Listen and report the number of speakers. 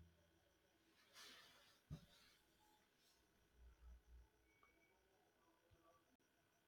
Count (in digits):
0